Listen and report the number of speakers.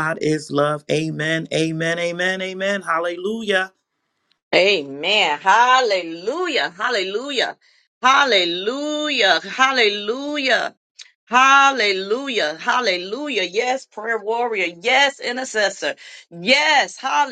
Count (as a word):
two